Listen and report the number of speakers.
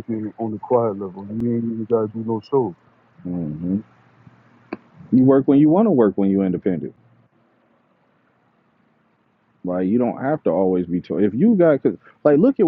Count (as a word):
two